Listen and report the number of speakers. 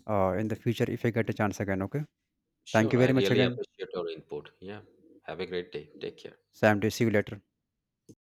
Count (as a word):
two